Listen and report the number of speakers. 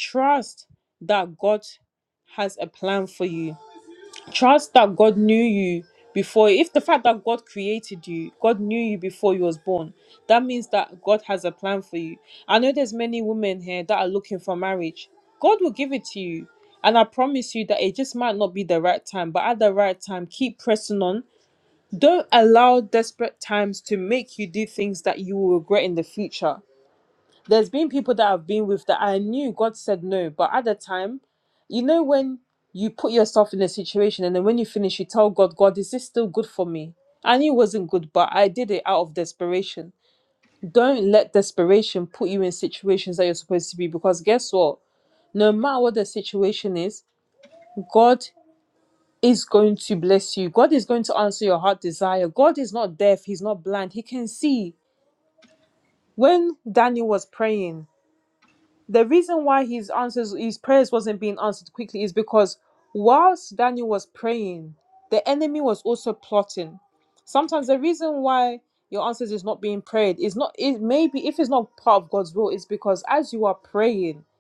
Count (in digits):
1